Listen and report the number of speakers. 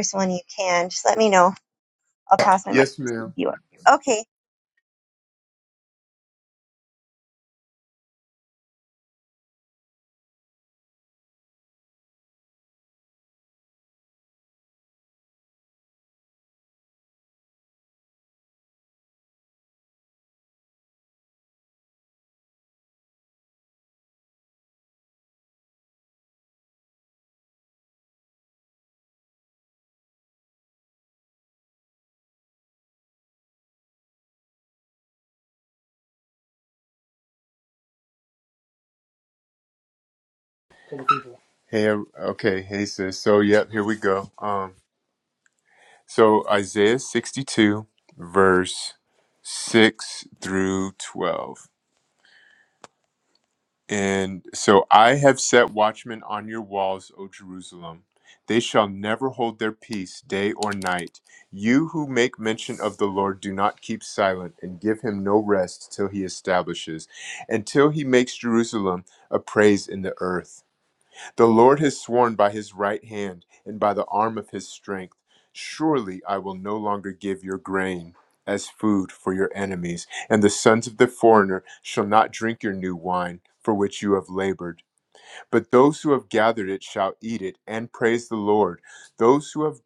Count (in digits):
2